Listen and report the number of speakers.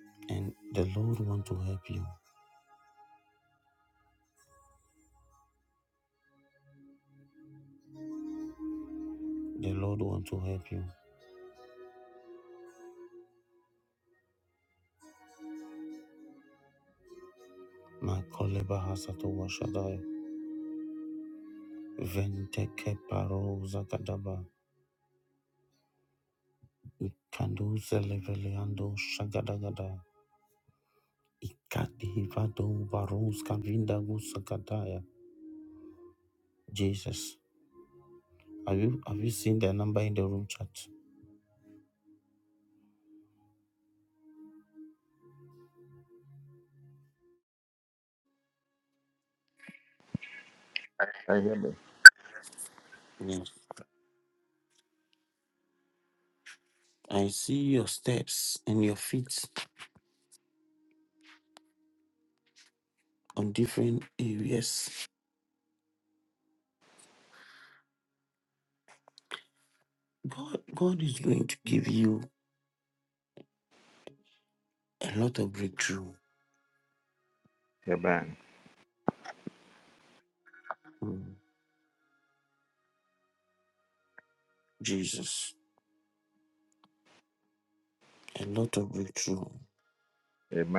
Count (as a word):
two